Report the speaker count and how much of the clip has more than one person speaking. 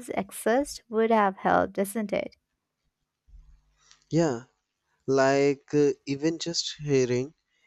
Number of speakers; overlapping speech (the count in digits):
2, no overlap